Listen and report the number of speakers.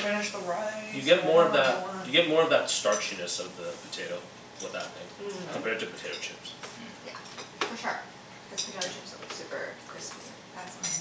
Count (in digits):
3